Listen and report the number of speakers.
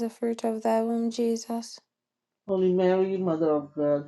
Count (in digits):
2